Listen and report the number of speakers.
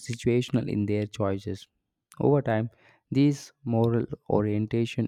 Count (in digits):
1